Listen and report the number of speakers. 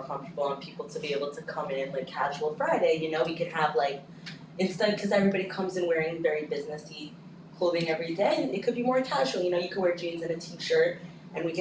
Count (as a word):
one